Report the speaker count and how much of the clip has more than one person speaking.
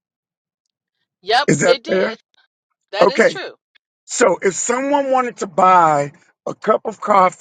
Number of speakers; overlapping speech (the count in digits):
2, about 14%